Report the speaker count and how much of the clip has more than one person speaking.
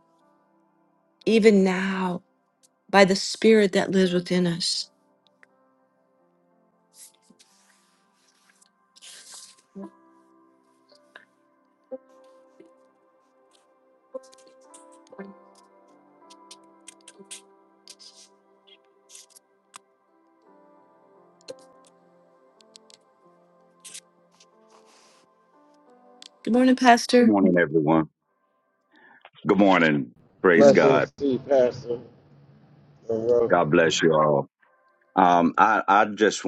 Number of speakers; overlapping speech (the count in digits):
3, about 2%